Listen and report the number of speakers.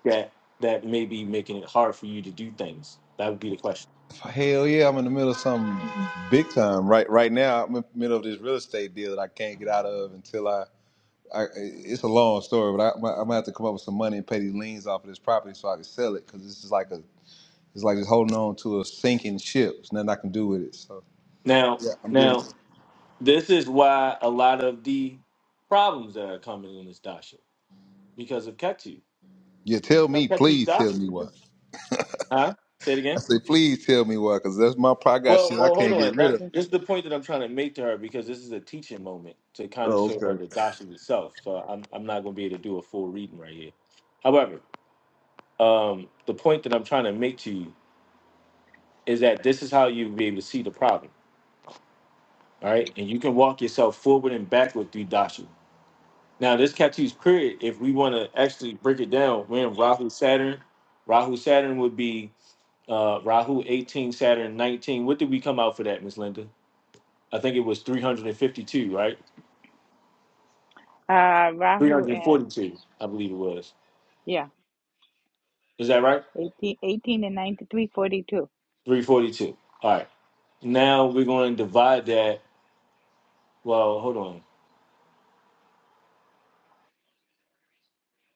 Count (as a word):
three